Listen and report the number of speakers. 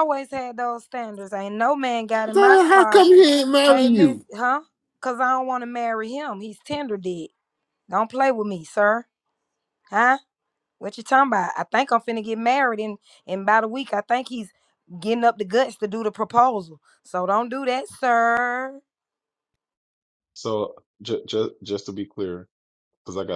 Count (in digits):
3